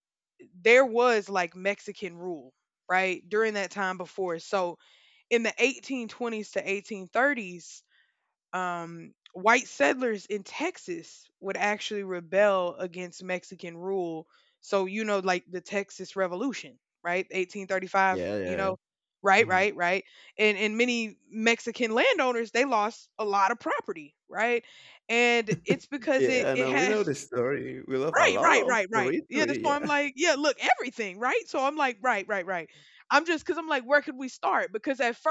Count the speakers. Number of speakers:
2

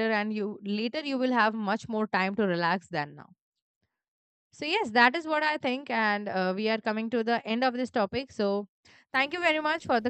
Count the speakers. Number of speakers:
1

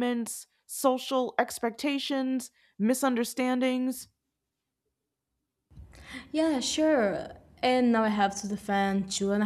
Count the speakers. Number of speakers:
2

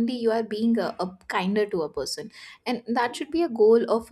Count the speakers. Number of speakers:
1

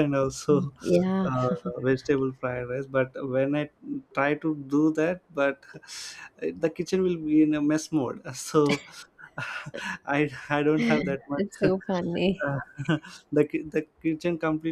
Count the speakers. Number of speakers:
2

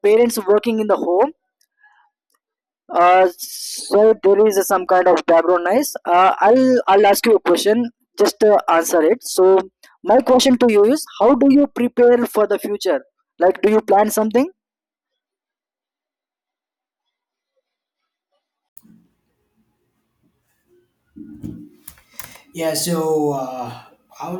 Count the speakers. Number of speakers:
2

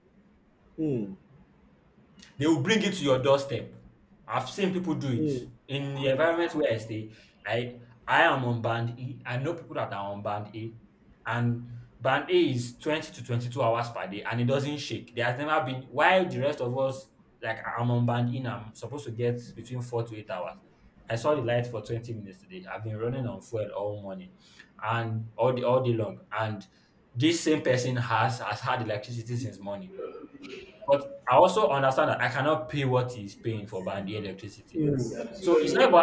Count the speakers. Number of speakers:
2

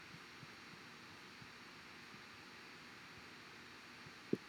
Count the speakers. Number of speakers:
0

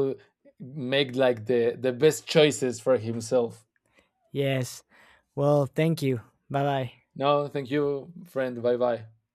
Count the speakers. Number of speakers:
2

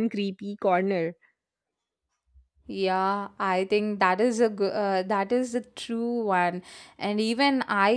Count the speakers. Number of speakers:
2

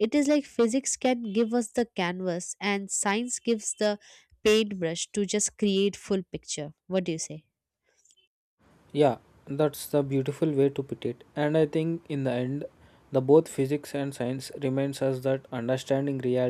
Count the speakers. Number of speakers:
2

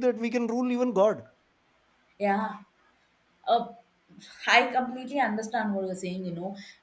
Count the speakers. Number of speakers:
2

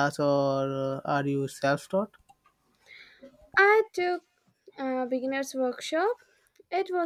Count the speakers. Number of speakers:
2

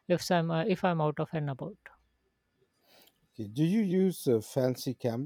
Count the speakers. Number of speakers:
2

